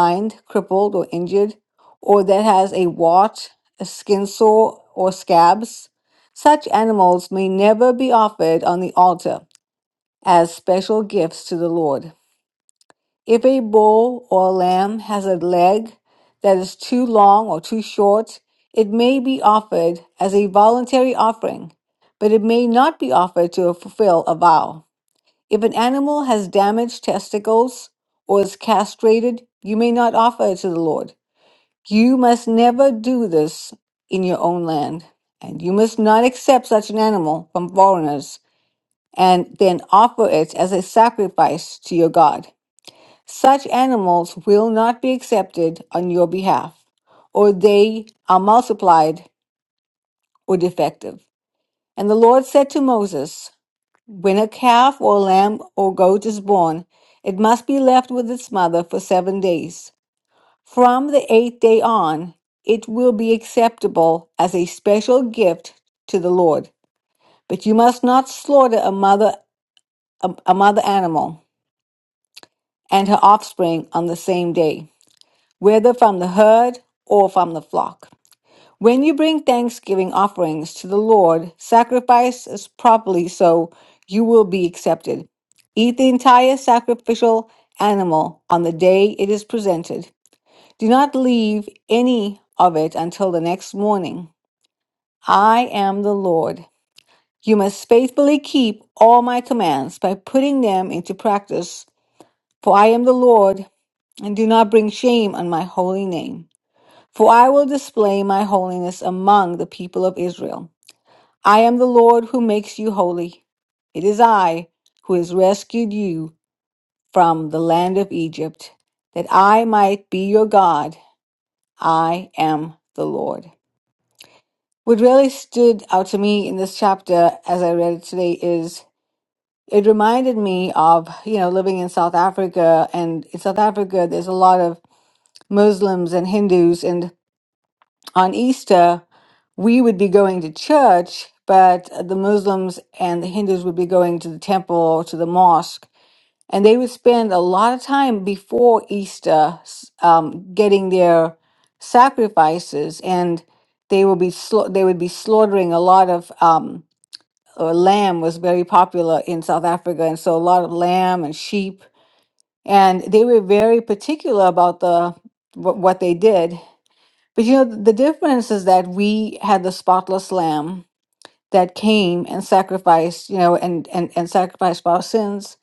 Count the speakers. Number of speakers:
one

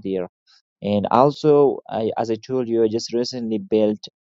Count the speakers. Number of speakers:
one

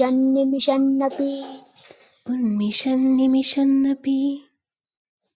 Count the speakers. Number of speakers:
two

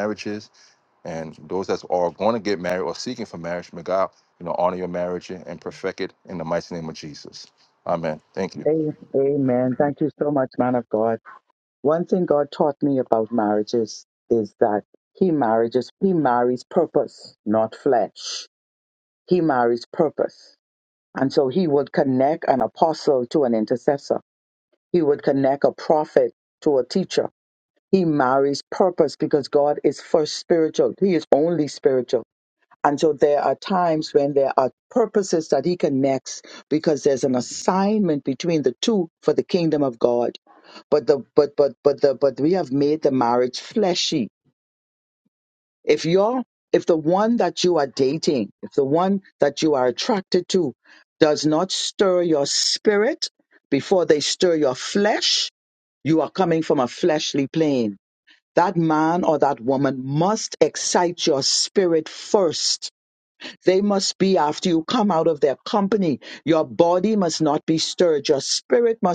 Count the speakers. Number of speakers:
two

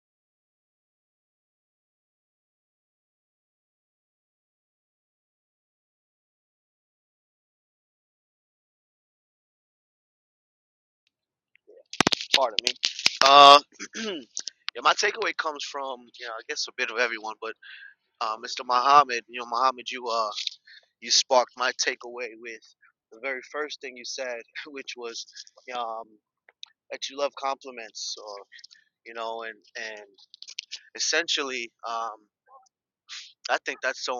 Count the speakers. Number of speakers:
one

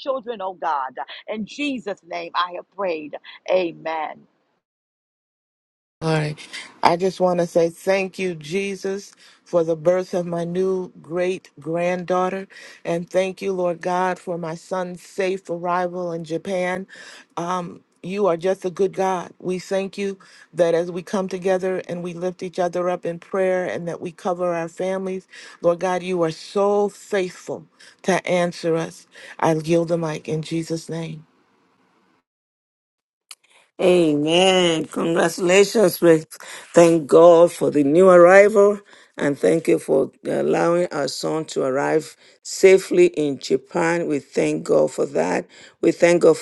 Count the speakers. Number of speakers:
three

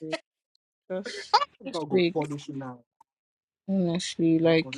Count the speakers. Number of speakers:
two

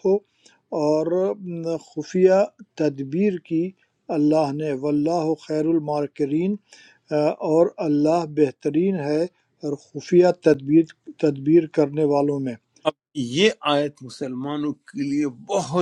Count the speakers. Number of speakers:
two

